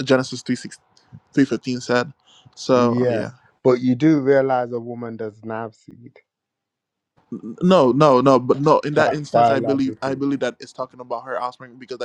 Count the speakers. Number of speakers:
2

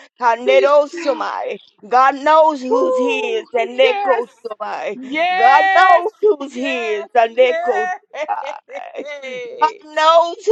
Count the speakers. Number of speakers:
2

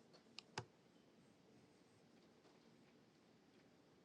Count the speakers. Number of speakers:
0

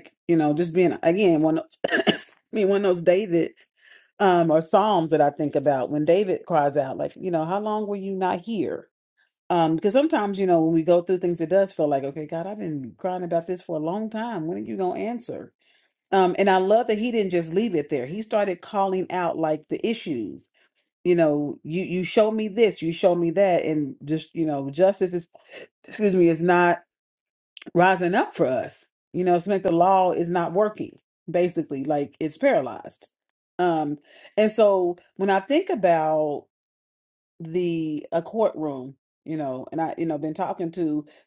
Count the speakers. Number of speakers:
1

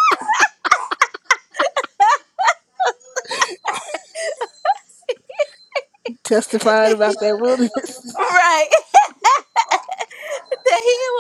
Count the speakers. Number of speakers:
2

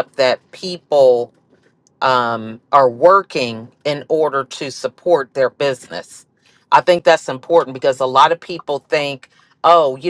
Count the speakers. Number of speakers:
1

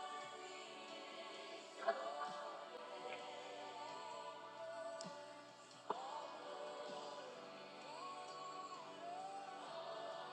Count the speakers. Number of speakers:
0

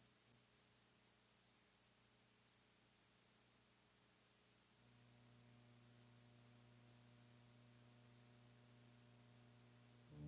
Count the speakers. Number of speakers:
0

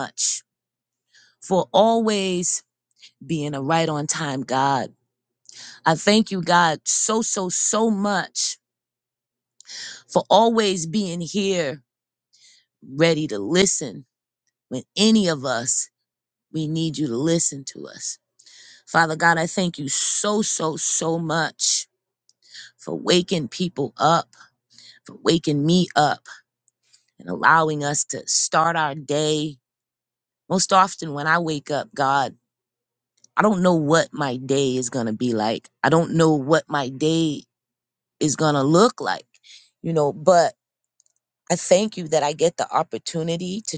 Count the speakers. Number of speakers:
1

